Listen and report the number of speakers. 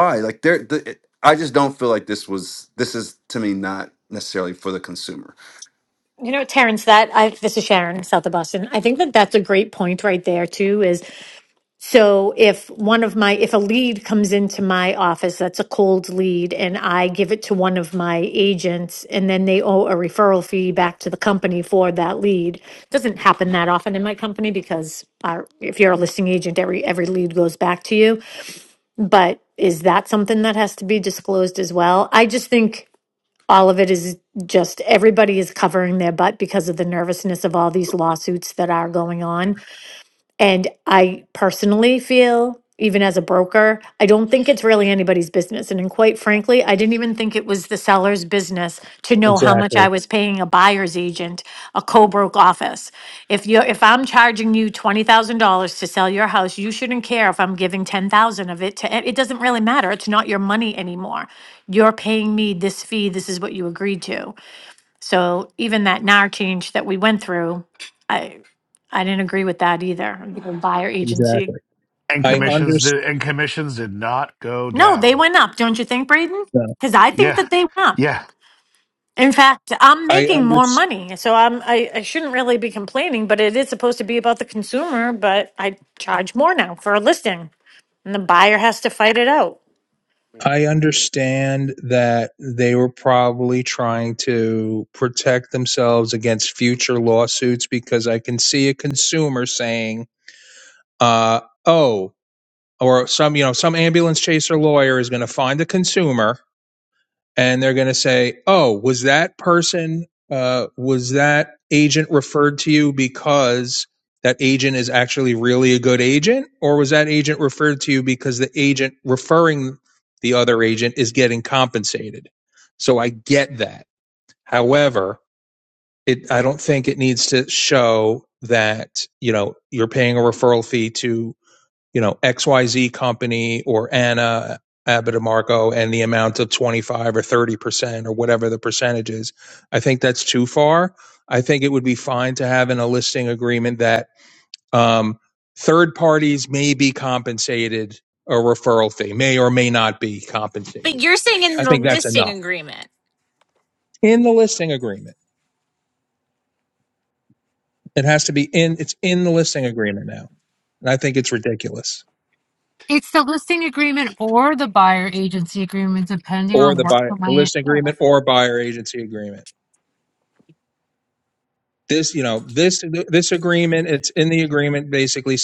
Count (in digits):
6